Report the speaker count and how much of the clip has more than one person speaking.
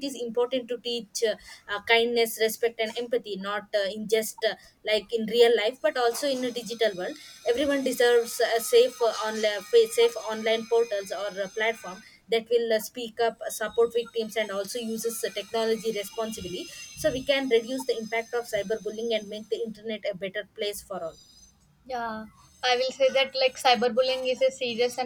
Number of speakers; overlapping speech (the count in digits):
2, no overlap